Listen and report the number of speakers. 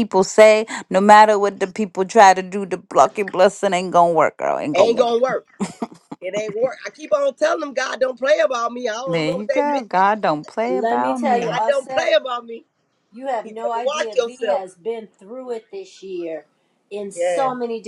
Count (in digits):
3